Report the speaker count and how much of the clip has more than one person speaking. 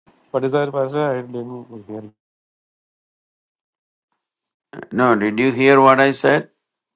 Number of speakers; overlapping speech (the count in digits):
2, no overlap